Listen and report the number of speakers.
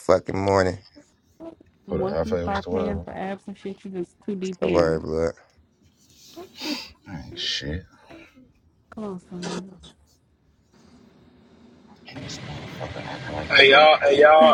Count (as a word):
four